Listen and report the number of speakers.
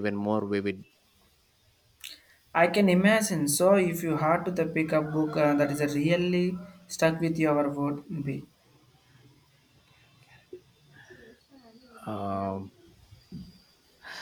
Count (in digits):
2